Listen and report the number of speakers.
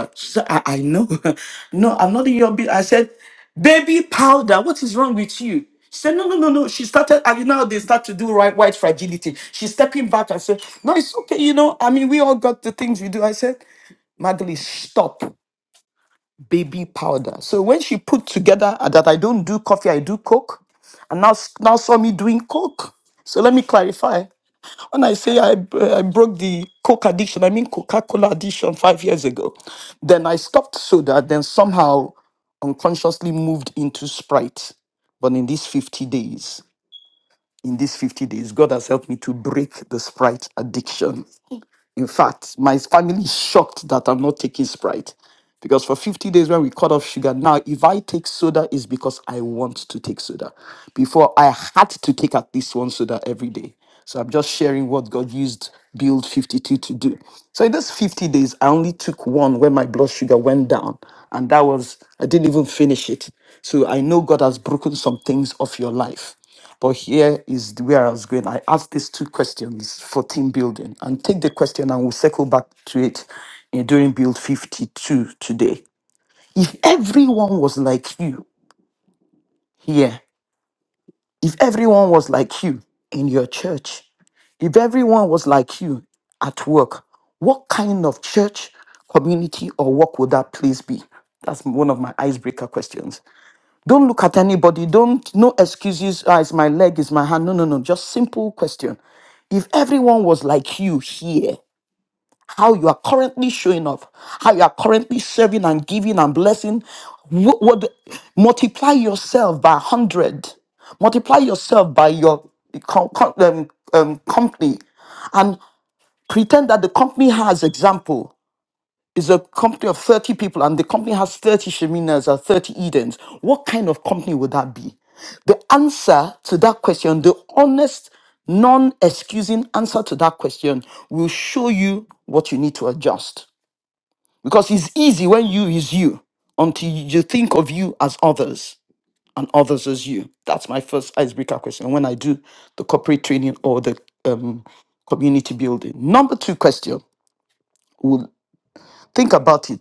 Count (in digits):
1